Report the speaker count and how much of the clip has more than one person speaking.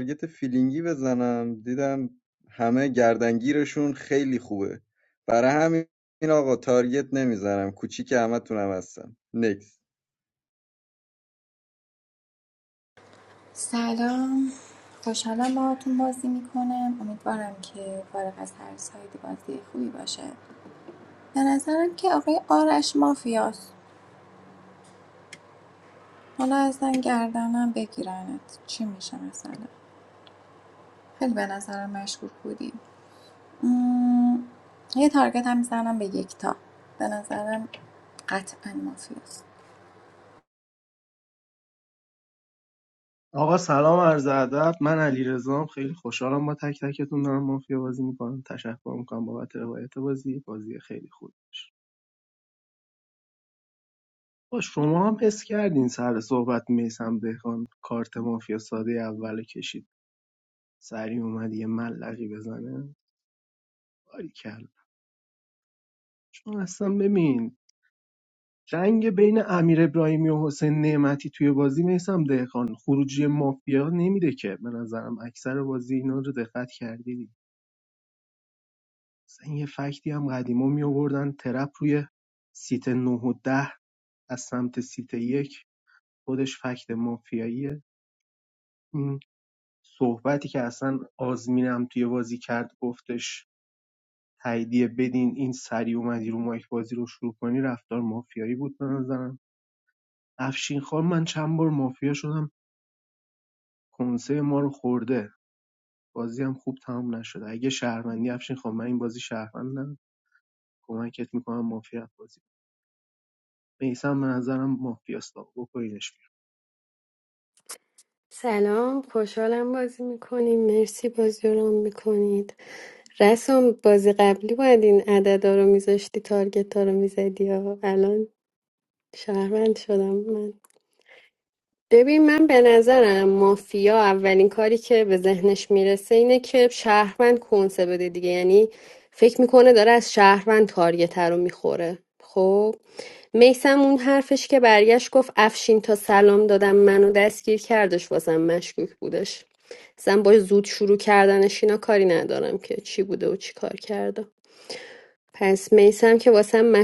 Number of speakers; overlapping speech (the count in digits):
4, no overlap